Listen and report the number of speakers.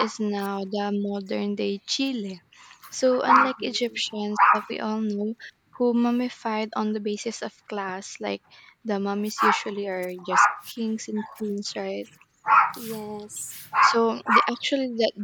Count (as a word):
two